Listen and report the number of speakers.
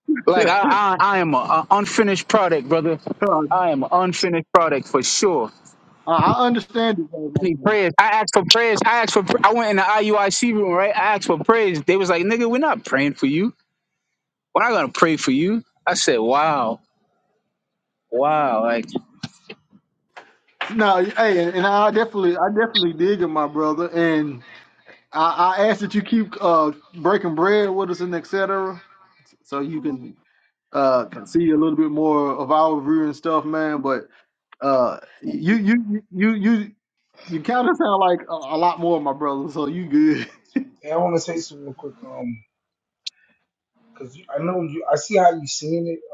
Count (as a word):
three